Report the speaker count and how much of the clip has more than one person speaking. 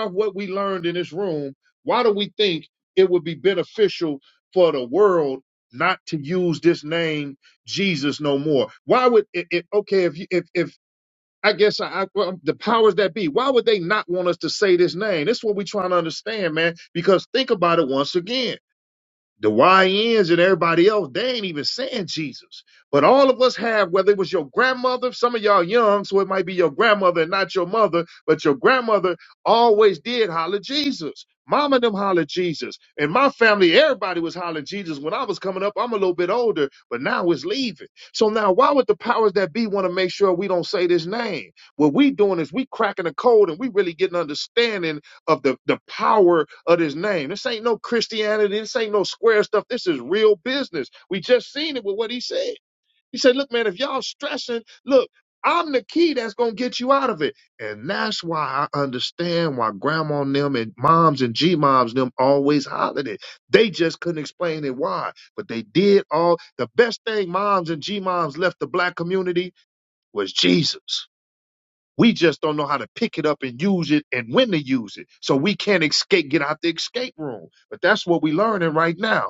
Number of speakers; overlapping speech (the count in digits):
1, no overlap